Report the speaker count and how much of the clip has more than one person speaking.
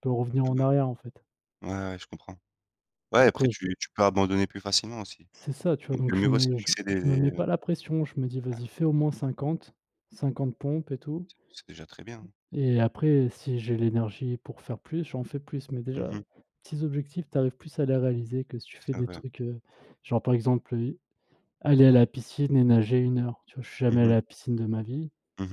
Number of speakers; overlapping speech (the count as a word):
two, about 12%